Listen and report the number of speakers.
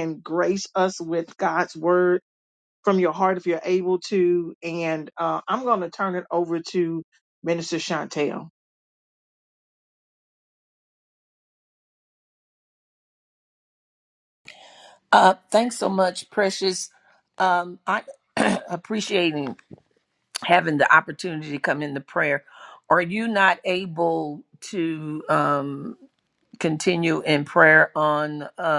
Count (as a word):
two